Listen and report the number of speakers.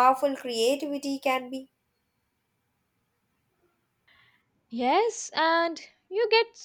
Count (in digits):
2